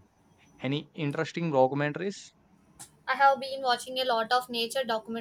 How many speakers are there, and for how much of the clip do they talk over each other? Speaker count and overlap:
two, no overlap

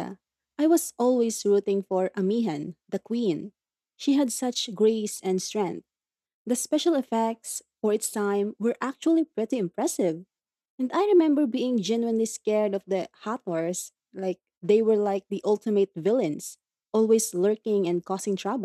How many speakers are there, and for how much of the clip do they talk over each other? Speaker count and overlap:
one, no overlap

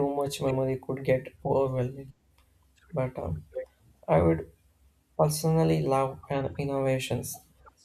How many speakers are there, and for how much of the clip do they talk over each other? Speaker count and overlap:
one, no overlap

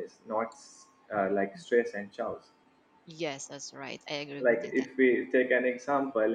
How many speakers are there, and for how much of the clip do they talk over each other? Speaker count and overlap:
two, about 7%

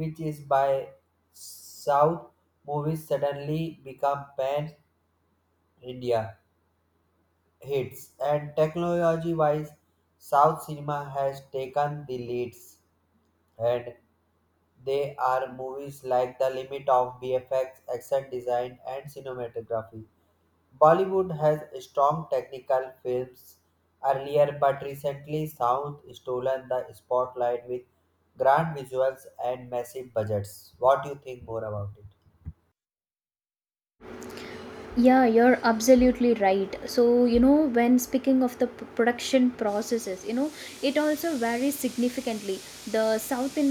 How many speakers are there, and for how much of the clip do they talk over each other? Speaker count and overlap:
two, no overlap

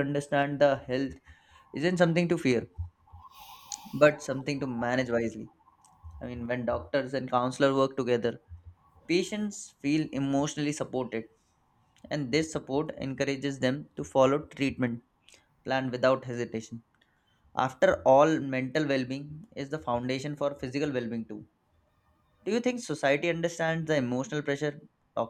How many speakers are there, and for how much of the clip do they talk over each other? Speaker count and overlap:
one, no overlap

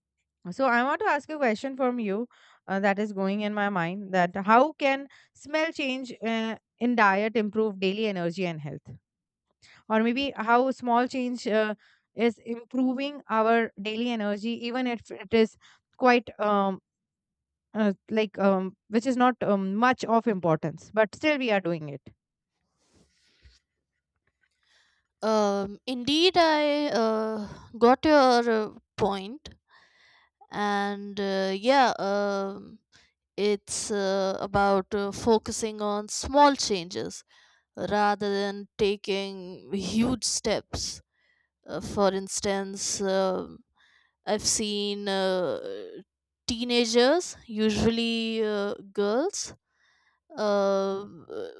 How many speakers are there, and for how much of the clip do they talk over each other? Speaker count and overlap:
two, no overlap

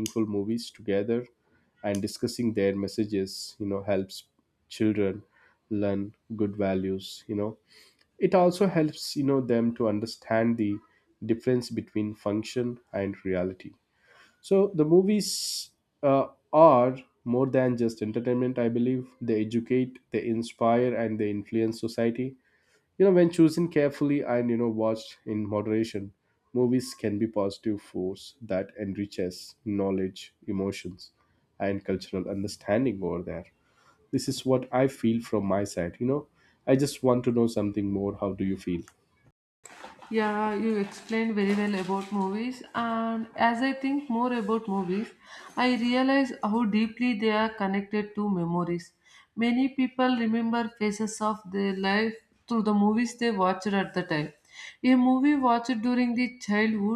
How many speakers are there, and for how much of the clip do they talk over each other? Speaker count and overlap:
two, no overlap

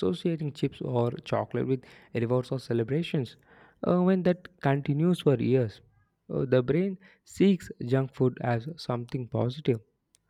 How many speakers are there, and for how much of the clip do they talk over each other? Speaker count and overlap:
one, no overlap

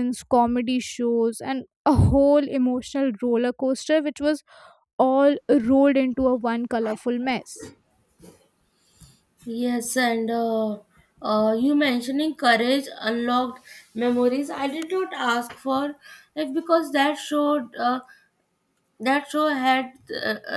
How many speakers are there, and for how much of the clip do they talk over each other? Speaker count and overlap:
two, no overlap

